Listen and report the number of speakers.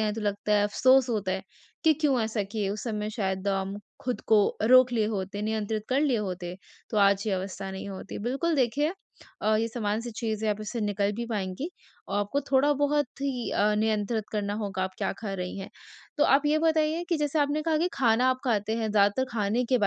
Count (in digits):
1